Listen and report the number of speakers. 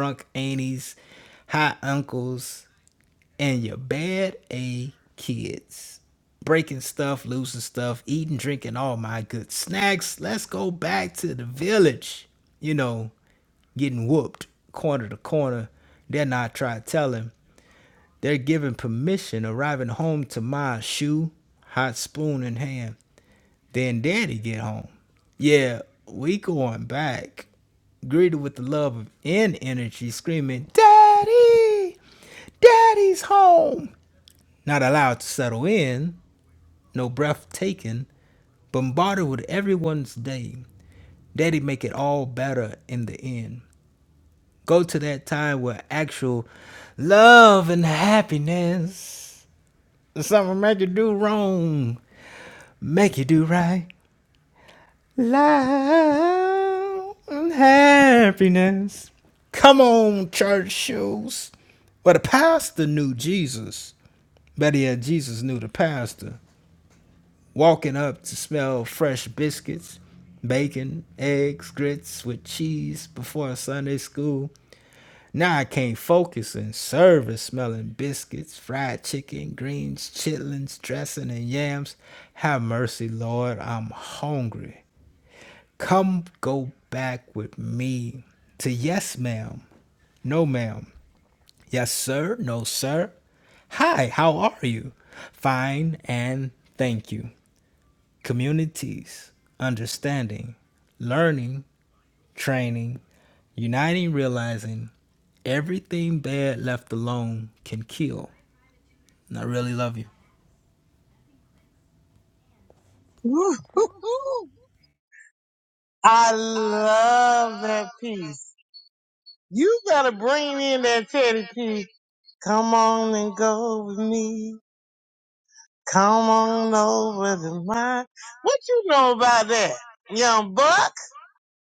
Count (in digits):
2